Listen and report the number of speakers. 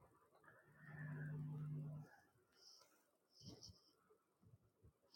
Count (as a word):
zero